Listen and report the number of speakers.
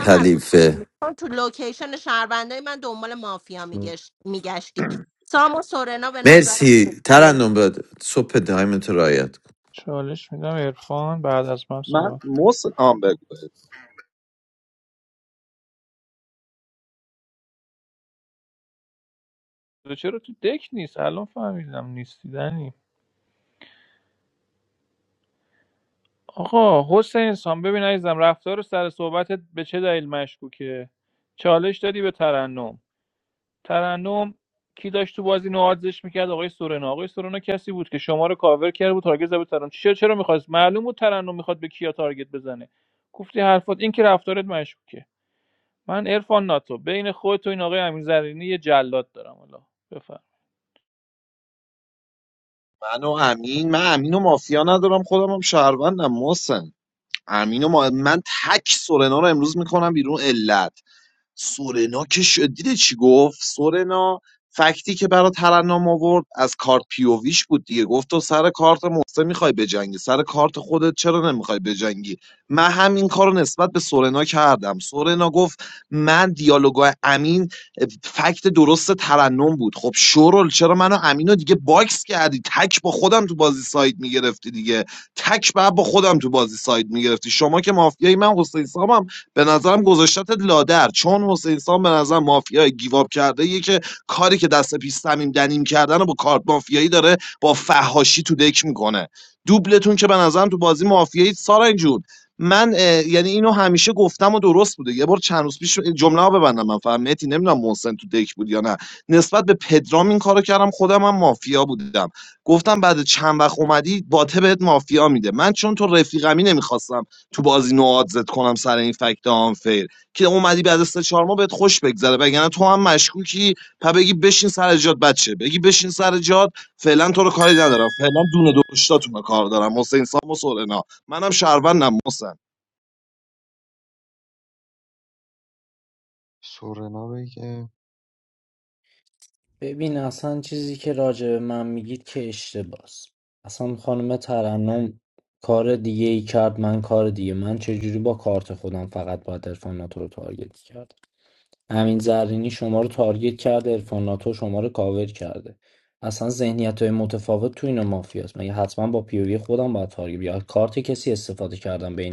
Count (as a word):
six